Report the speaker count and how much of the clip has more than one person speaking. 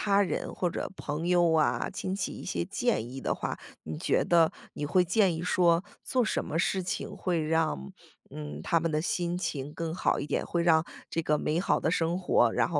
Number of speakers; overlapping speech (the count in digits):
1, no overlap